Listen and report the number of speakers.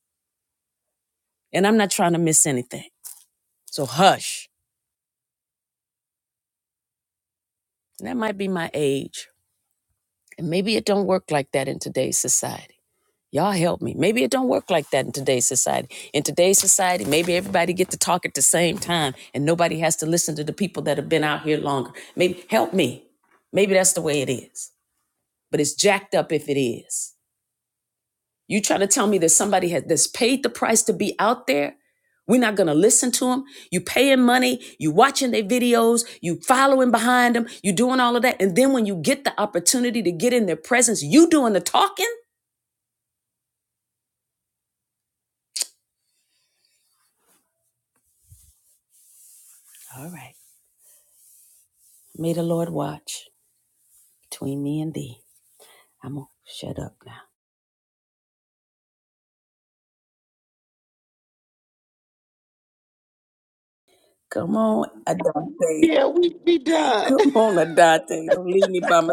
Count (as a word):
two